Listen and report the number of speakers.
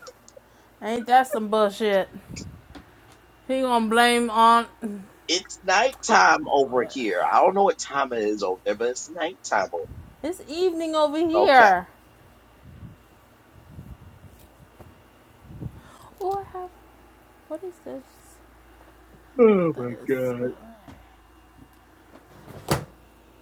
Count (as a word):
two